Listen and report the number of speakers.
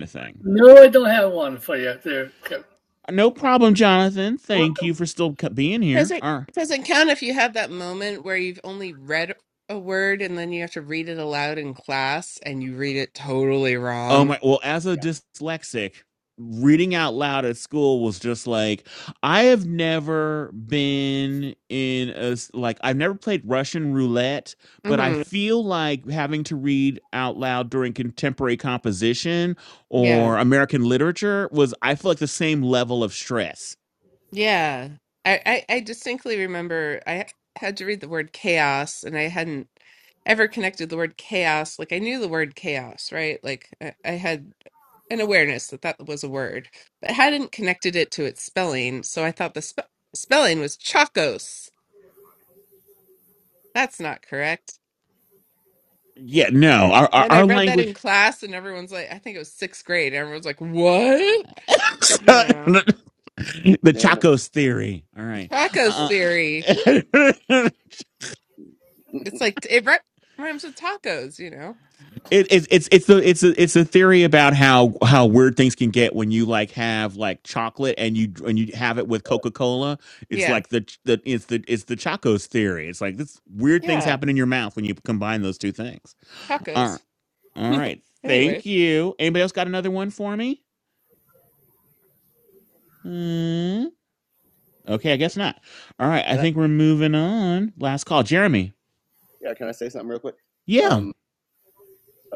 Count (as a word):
four